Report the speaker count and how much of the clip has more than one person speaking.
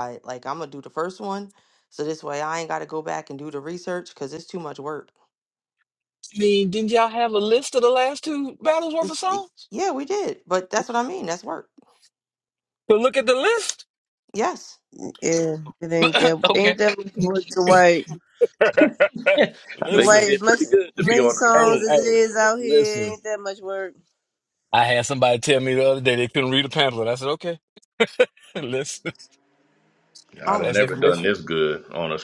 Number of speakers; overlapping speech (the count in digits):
4, about 11%